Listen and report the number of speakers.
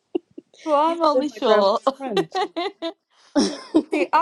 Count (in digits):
2